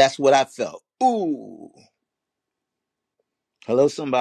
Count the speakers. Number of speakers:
1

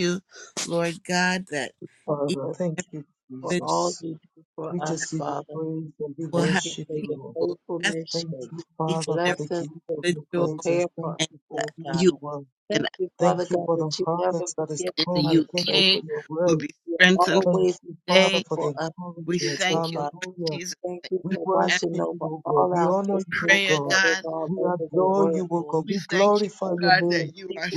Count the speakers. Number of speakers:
3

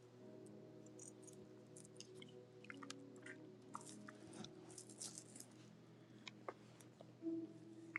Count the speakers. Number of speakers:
0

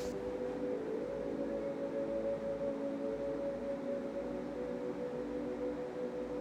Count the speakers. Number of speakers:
0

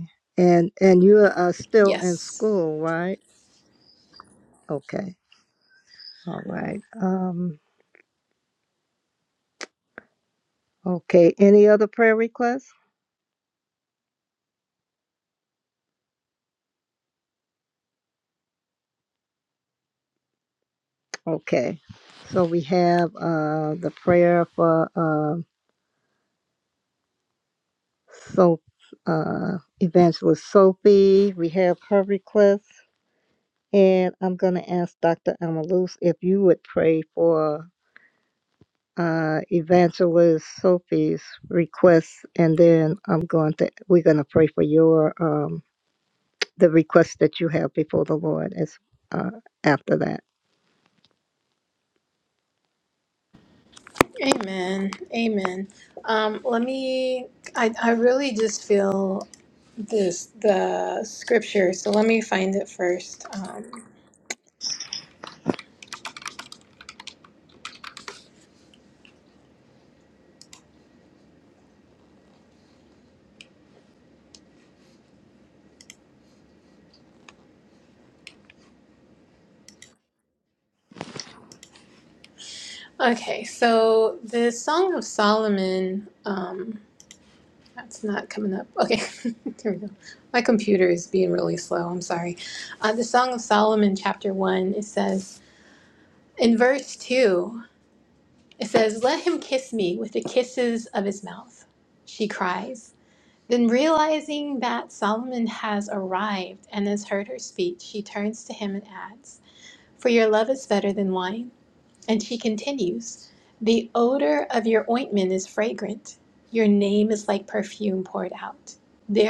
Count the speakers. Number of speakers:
2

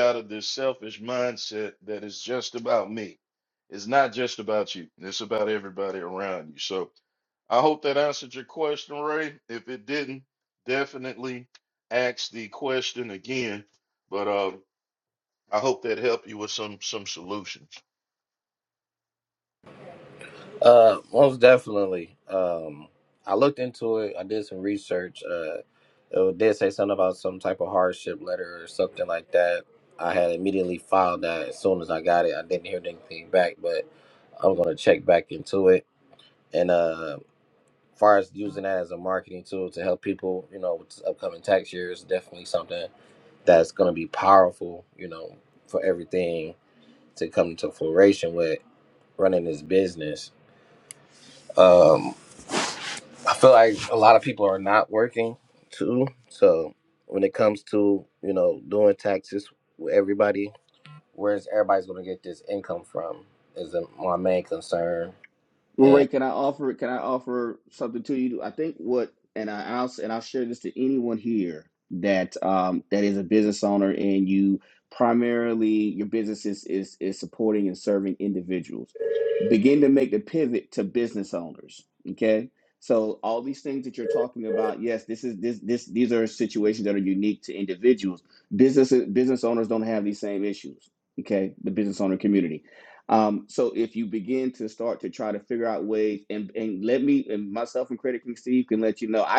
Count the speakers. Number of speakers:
3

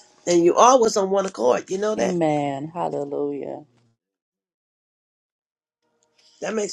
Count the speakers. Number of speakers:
2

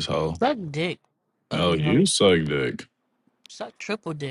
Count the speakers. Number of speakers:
2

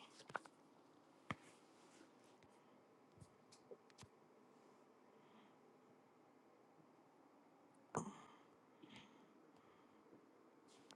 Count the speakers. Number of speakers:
0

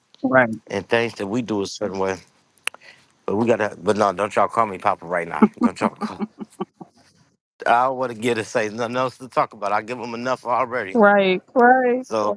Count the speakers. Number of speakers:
2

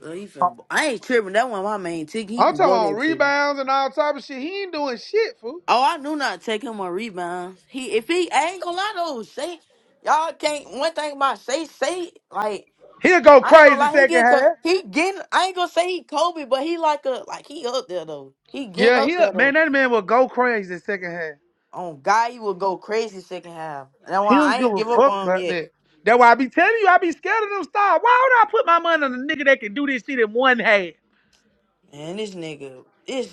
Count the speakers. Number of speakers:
2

